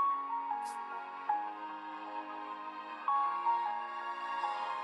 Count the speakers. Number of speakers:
zero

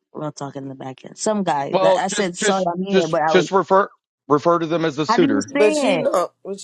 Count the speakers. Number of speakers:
three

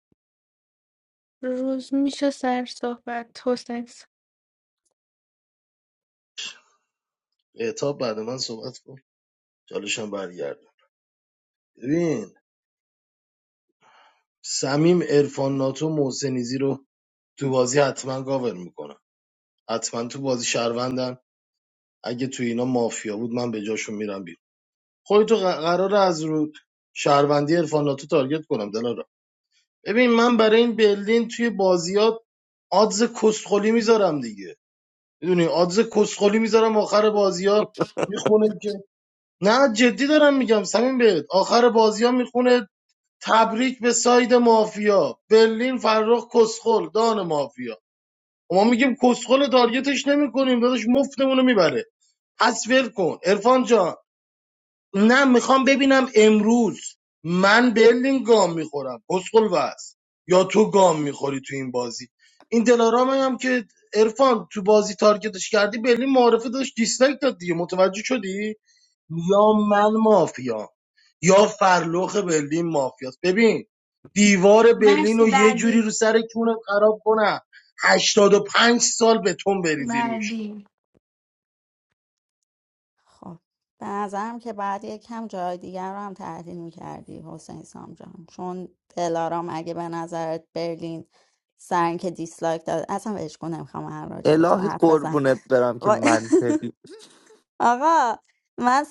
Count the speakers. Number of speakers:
four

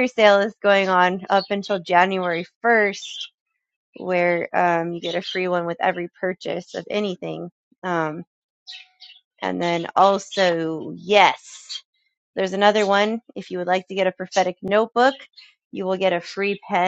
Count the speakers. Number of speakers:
one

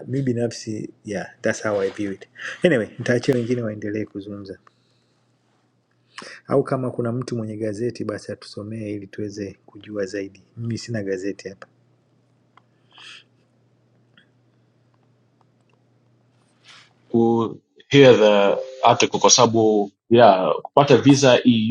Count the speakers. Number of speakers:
two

